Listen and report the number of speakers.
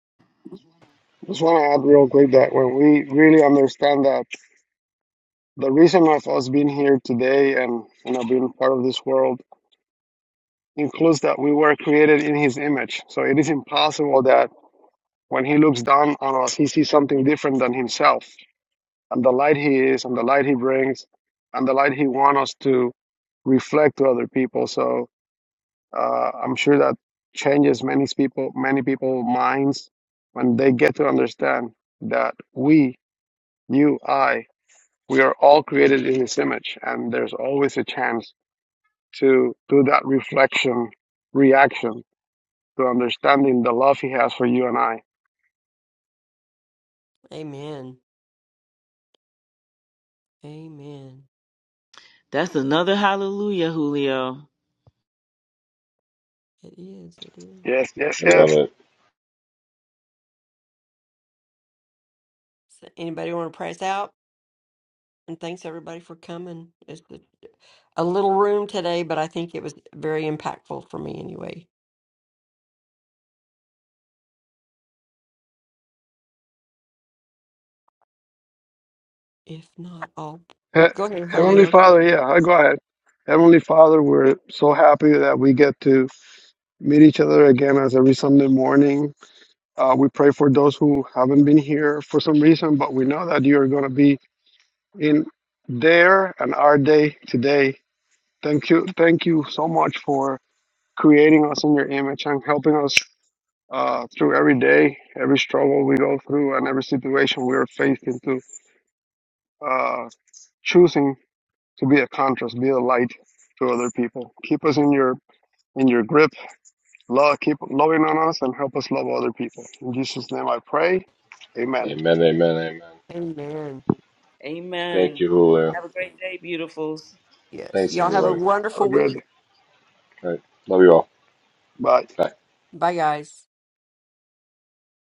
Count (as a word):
four